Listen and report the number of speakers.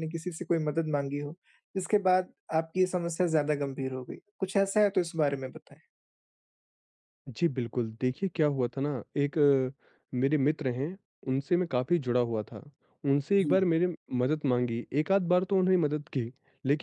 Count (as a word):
two